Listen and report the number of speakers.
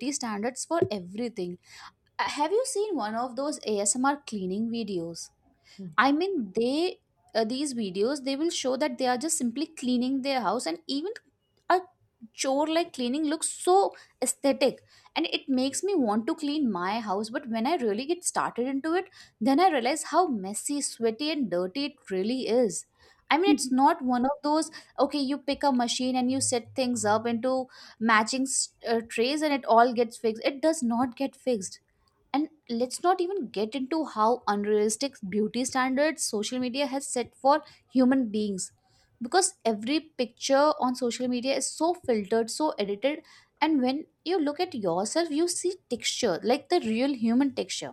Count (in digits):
1